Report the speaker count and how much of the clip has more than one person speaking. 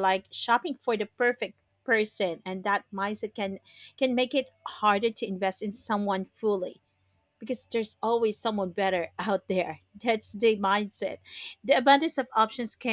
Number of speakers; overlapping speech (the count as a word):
one, no overlap